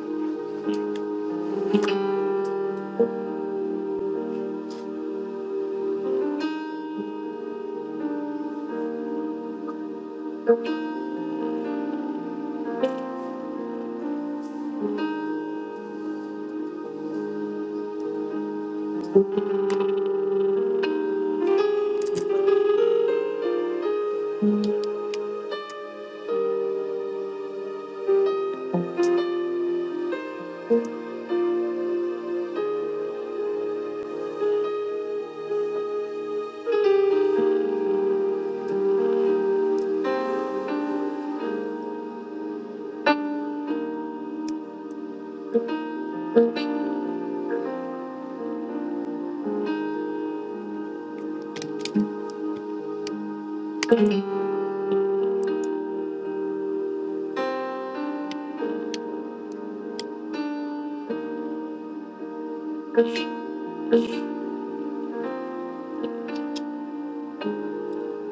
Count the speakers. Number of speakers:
0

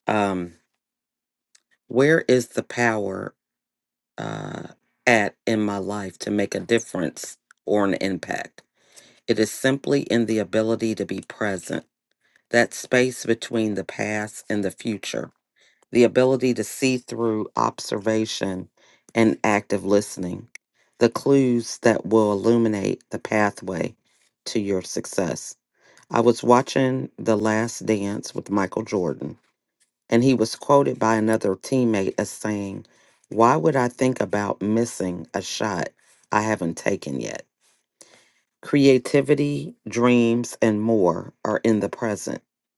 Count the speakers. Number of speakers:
1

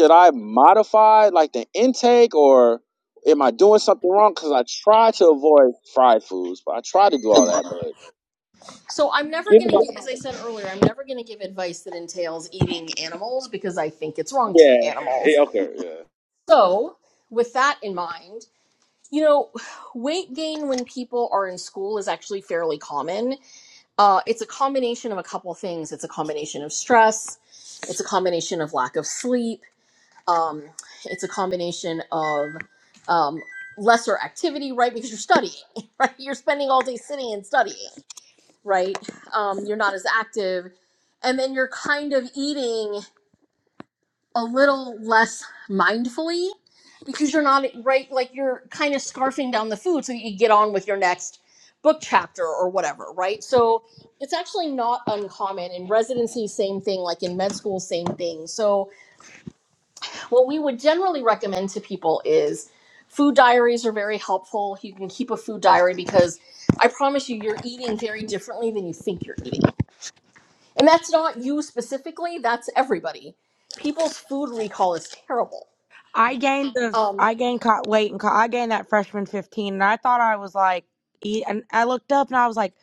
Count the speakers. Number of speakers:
3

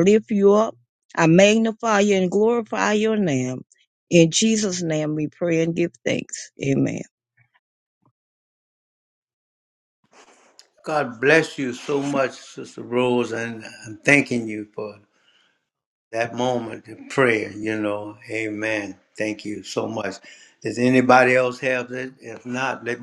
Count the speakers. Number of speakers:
2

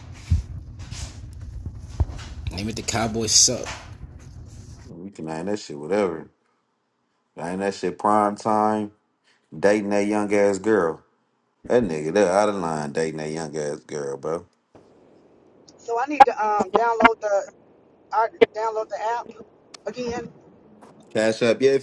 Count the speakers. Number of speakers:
3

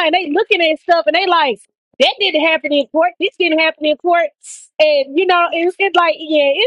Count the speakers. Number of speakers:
1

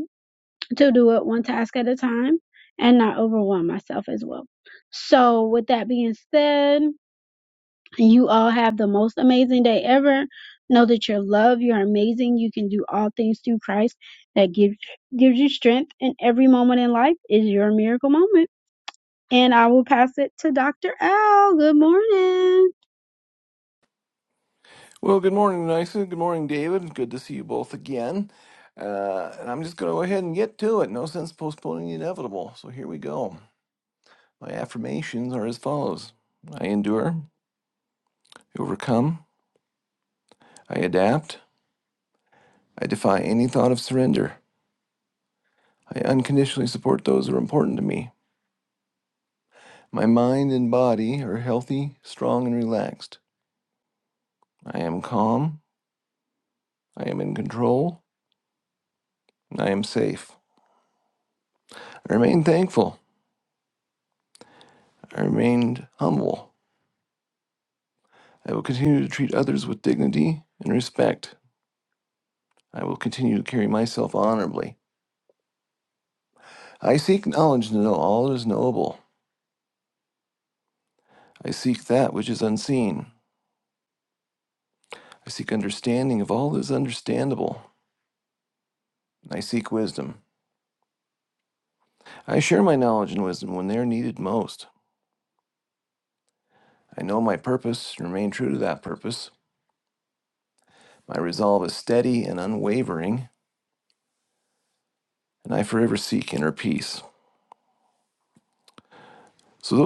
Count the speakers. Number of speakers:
2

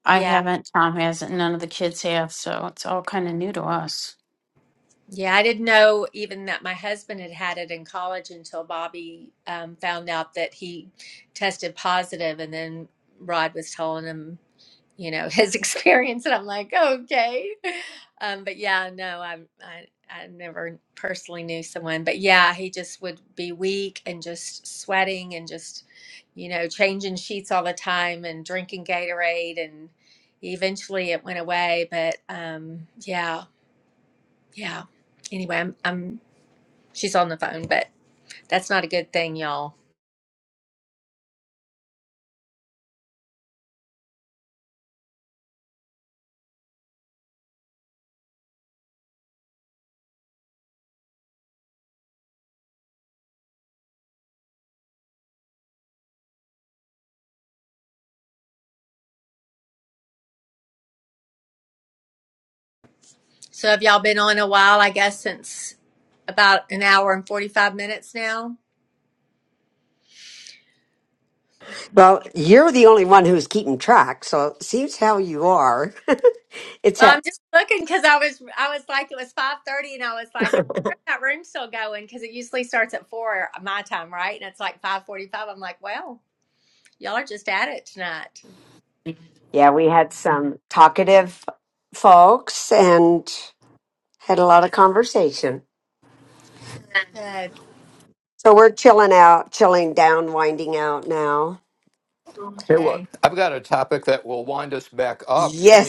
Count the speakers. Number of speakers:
4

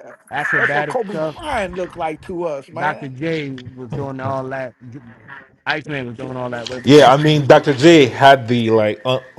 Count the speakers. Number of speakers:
3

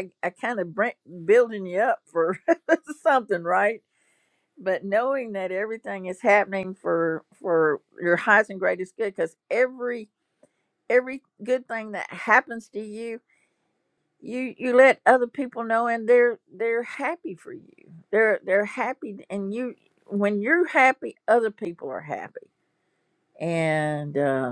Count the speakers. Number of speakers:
1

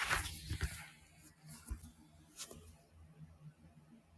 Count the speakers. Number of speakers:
0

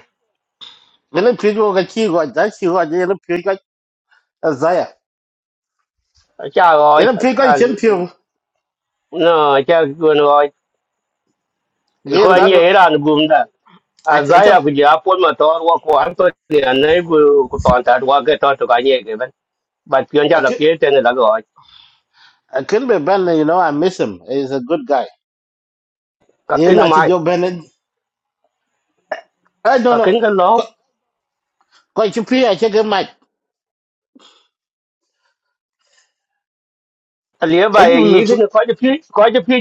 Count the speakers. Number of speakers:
2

